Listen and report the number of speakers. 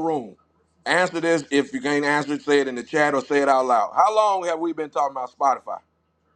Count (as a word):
one